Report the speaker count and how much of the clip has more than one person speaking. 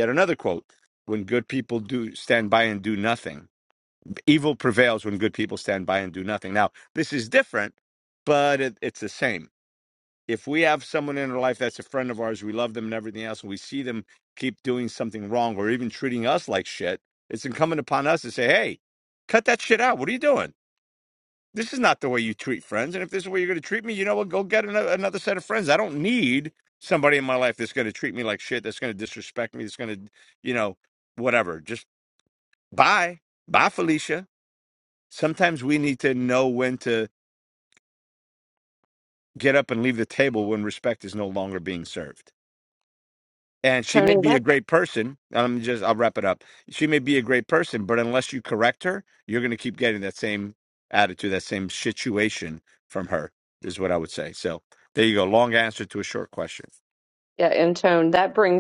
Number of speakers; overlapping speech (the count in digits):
2, about 1%